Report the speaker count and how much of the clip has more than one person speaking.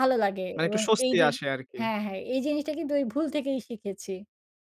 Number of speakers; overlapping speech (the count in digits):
2, about 17%